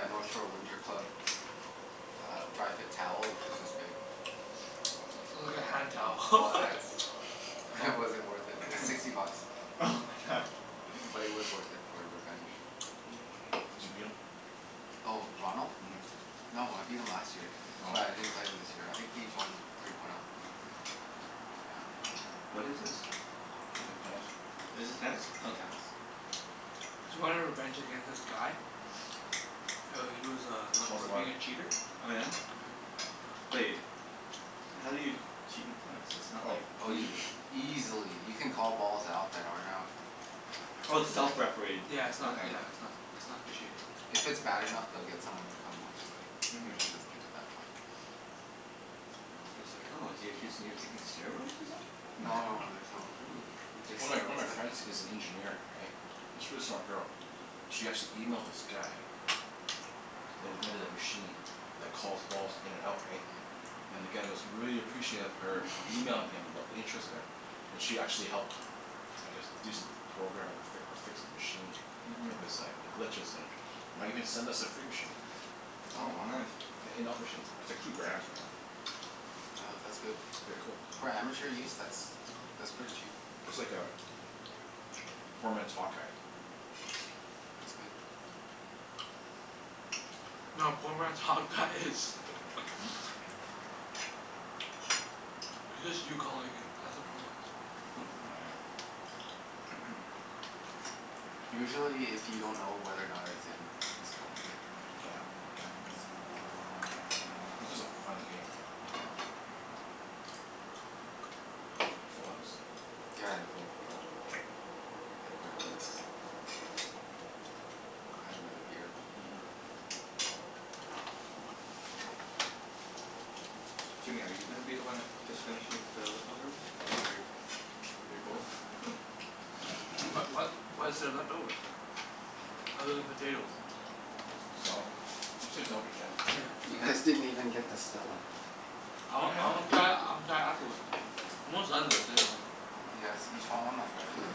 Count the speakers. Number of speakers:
four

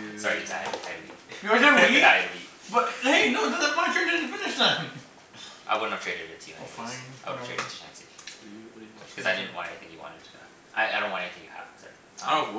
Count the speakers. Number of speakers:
three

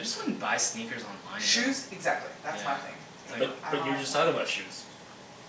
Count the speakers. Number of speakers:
three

